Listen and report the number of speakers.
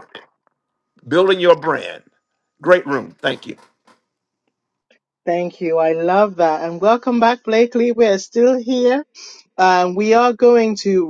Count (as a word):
two